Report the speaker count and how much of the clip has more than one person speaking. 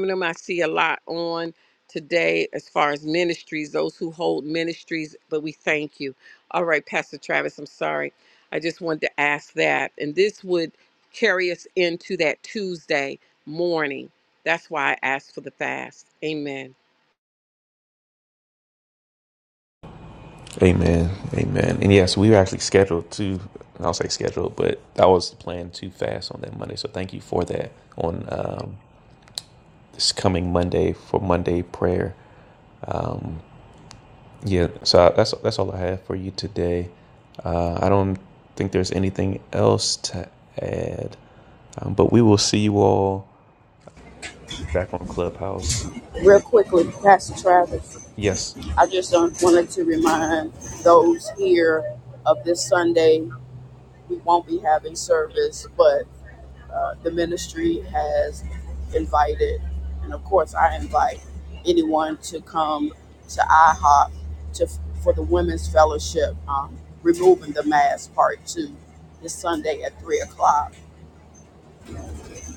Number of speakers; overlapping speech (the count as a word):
three, under 1%